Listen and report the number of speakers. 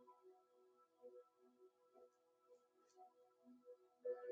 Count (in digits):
0